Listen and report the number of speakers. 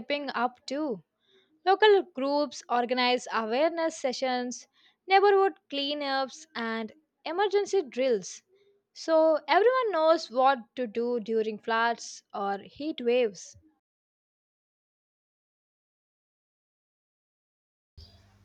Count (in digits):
1